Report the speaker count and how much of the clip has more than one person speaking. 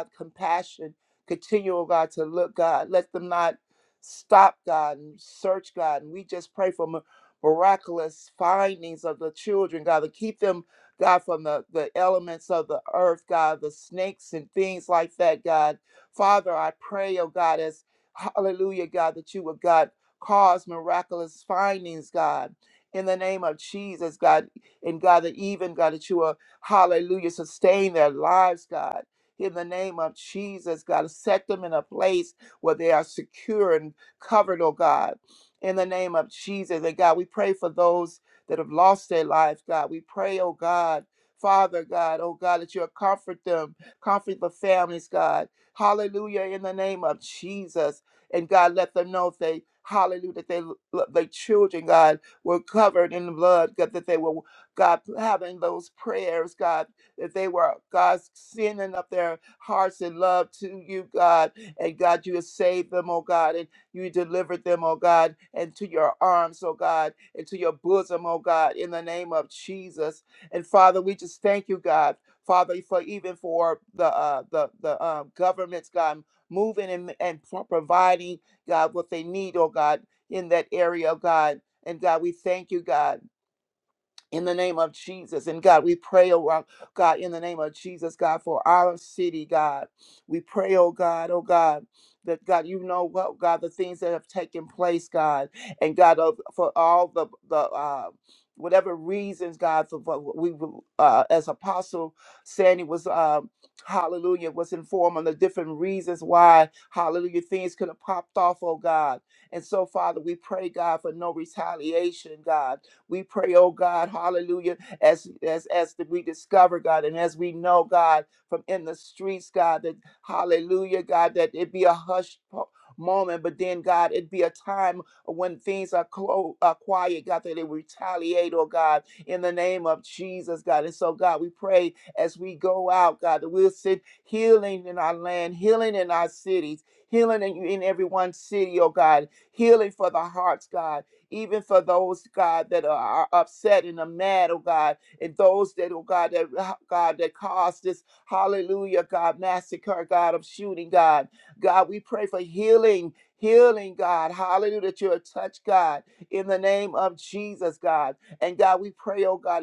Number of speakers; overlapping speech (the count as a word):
one, no overlap